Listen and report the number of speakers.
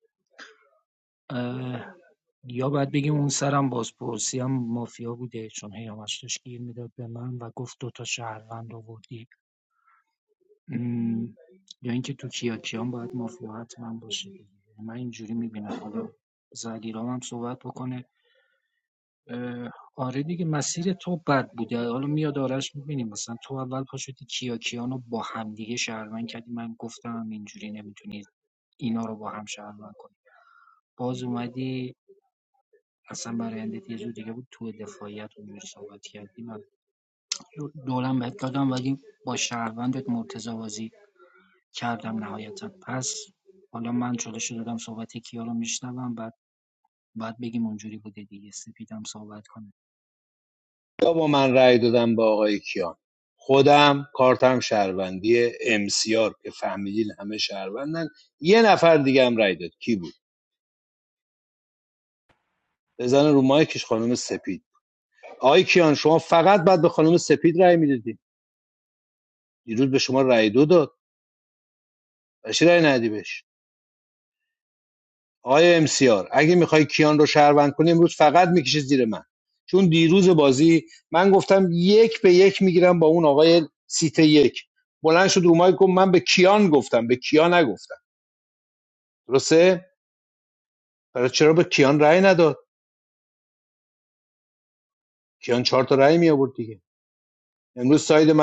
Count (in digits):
2